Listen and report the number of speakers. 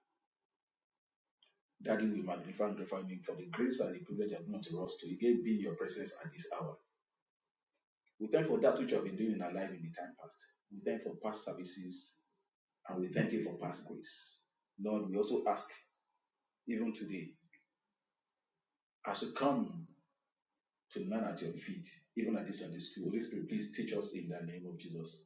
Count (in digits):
1